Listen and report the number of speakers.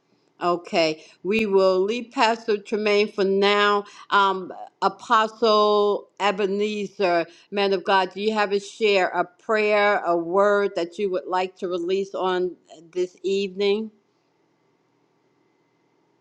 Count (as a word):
one